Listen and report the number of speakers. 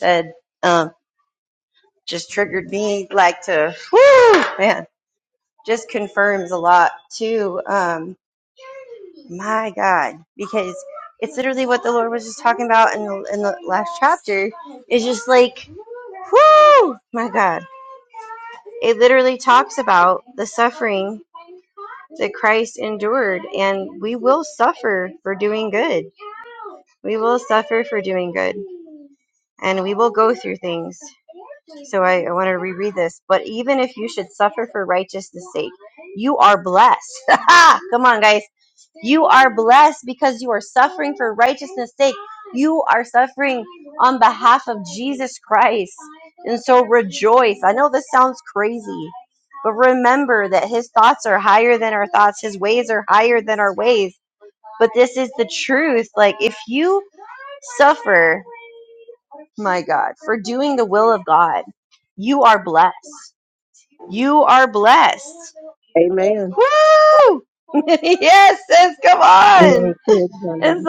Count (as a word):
two